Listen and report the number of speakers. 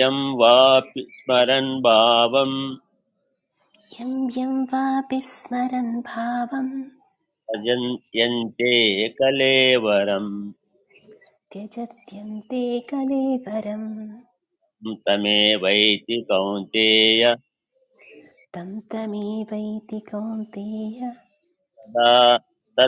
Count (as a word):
two